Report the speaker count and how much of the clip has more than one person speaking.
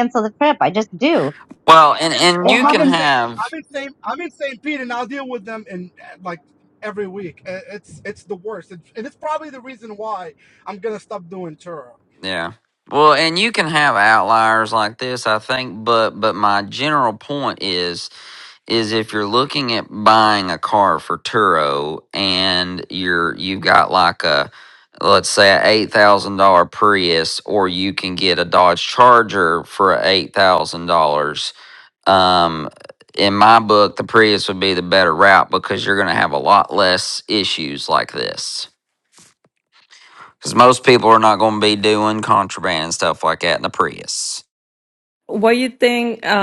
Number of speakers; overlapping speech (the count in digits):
4, about 2%